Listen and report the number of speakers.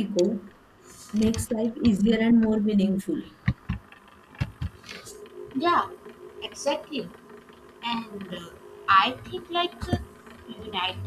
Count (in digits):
2